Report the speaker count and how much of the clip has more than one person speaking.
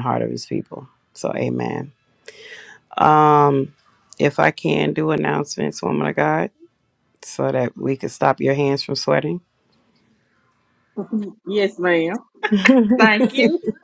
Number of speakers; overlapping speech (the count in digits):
2, no overlap